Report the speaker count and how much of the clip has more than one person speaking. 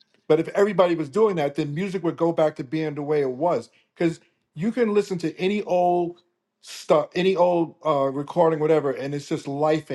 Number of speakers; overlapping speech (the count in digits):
1, no overlap